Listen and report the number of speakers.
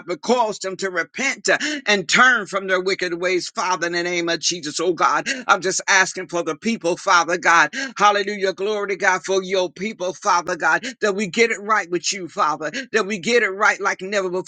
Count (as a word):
one